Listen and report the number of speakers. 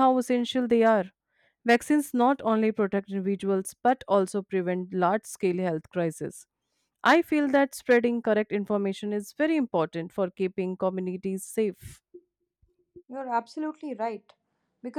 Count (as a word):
two